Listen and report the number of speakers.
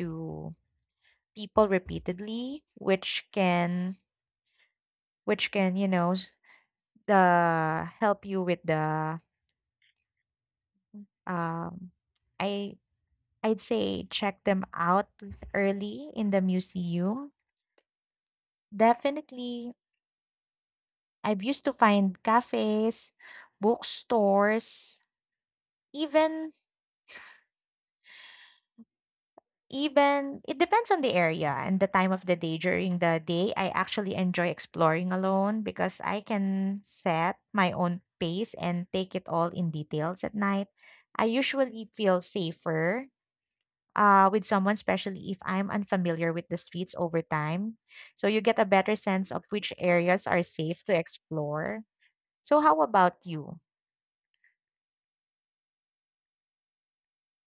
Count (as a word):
one